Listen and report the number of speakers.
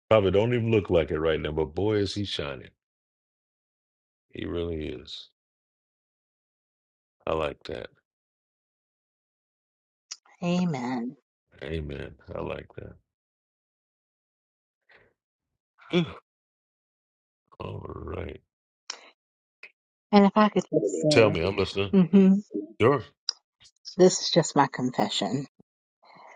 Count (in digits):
2